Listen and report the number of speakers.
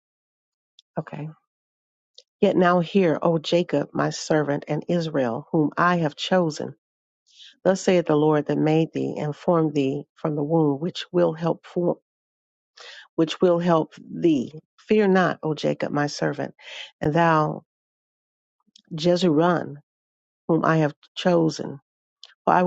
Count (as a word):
one